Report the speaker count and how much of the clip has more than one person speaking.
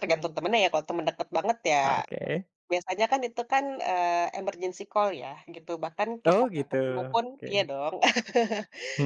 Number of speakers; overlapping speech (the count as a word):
two, about 9%